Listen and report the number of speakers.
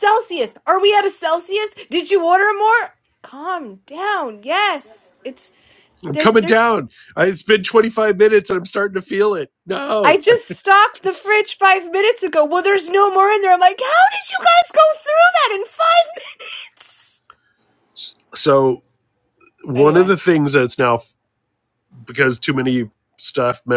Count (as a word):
two